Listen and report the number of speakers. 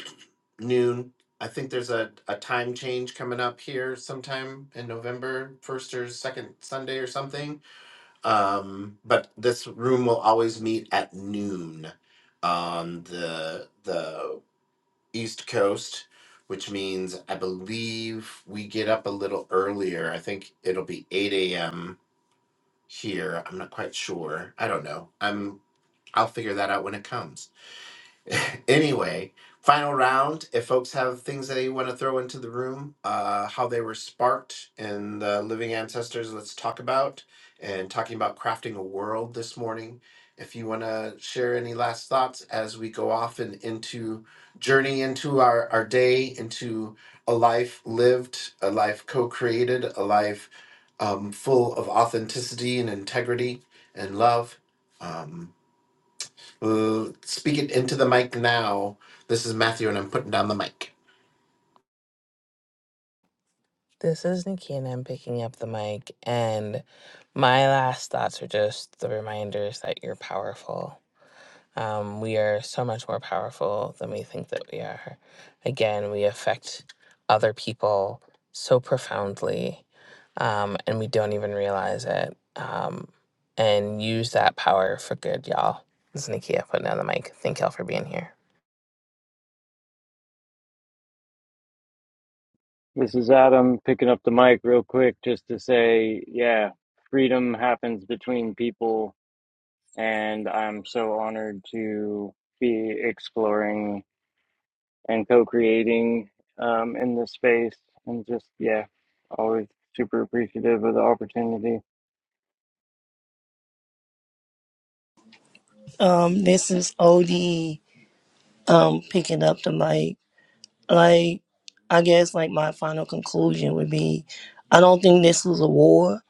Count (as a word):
four